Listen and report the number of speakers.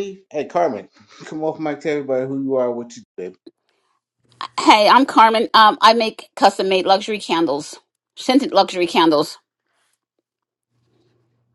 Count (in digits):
2